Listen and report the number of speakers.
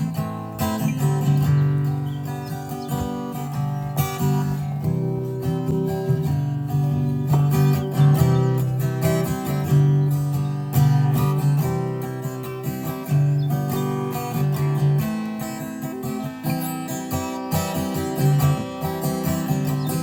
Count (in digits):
0